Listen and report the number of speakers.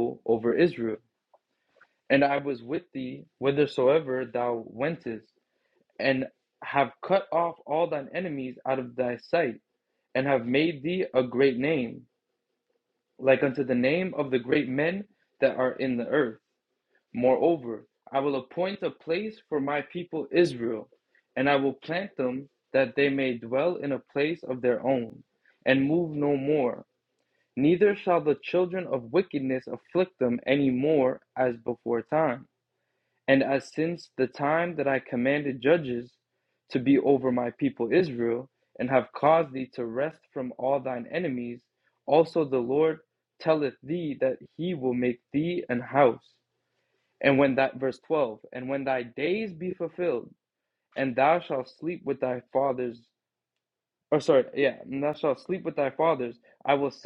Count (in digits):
1